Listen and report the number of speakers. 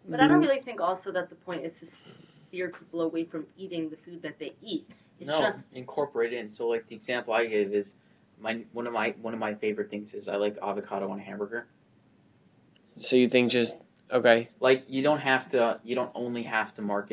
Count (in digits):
3